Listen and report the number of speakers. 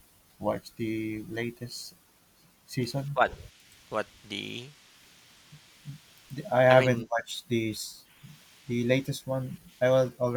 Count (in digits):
2